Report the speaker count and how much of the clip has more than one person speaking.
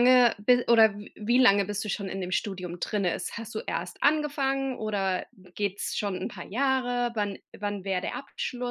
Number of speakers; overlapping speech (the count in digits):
1, no overlap